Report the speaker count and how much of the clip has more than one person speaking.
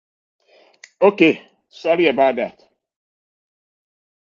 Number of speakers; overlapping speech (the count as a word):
one, no overlap